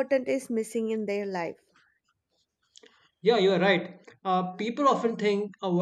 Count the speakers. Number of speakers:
two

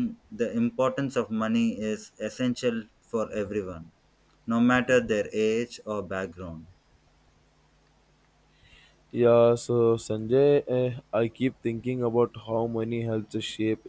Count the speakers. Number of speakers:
two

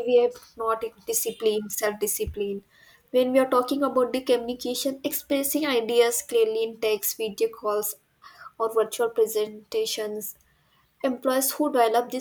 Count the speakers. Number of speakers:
one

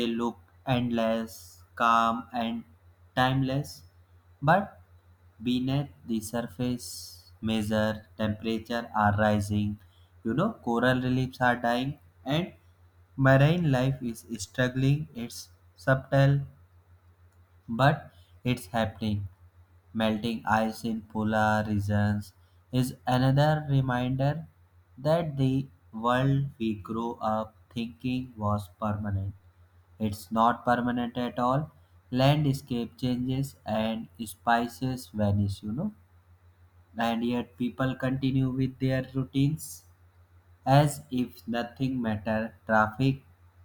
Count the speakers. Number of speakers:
one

